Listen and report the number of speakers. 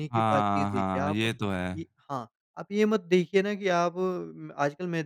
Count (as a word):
two